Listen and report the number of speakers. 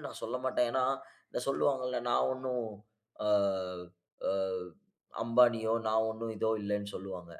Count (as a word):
one